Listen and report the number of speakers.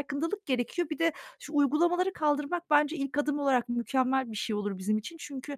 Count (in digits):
1